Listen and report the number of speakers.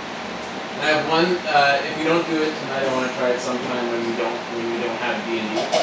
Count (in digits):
1